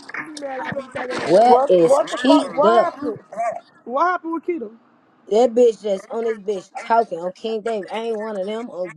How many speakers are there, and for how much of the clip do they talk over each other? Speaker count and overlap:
three, about 19%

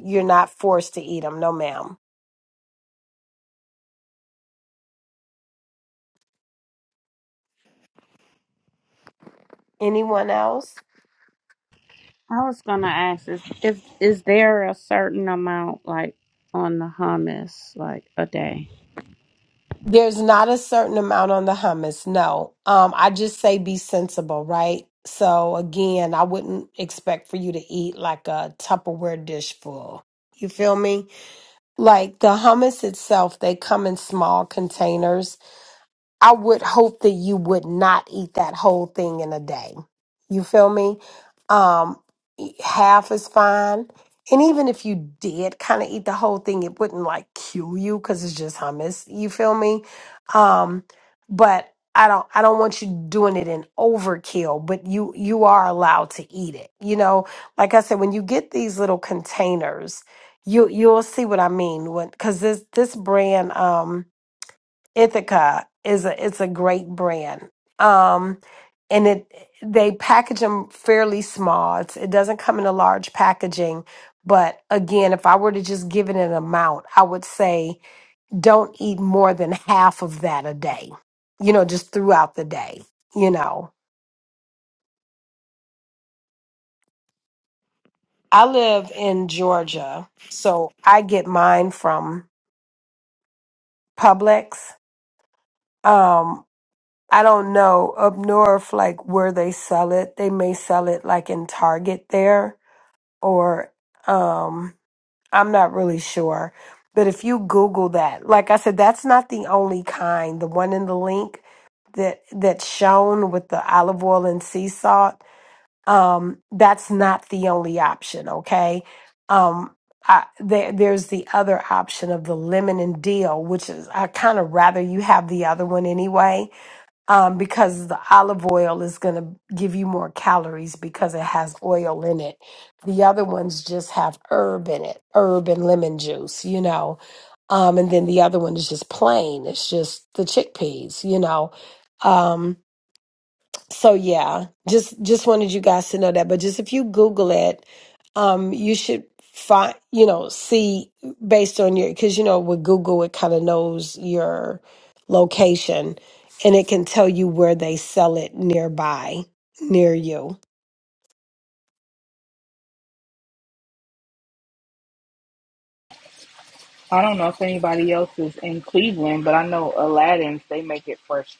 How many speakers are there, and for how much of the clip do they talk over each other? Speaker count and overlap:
three, no overlap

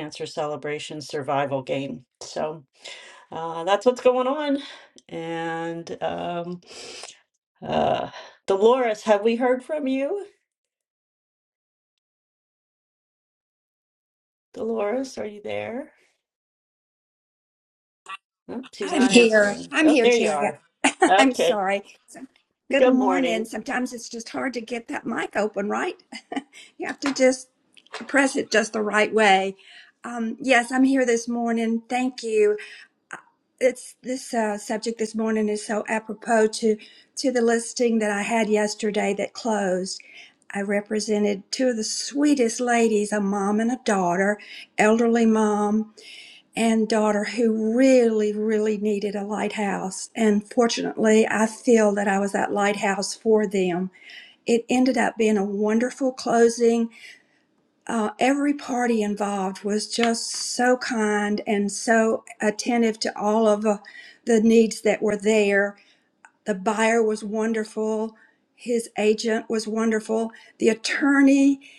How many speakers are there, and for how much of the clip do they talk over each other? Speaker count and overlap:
two, about 4%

